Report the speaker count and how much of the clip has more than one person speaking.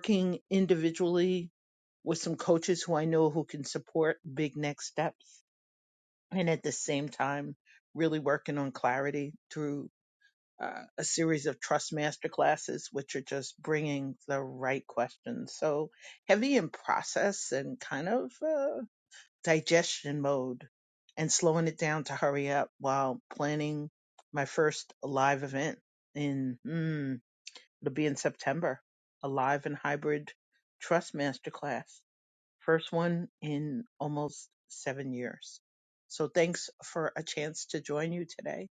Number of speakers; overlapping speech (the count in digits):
1, no overlap